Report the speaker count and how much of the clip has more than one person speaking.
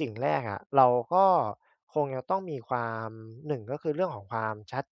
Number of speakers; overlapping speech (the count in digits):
1, no overlap